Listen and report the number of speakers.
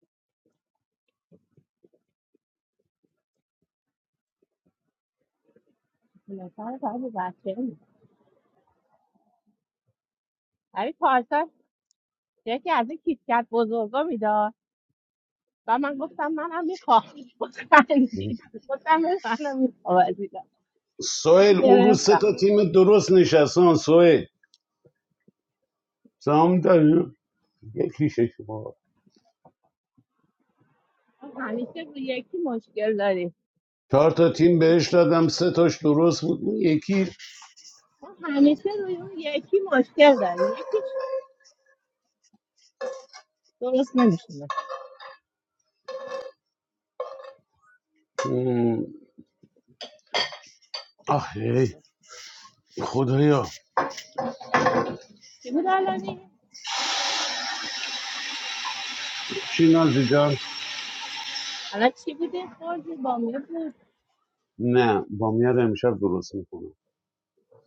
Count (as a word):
two